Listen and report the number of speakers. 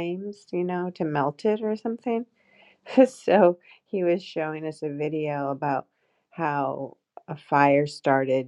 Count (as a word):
one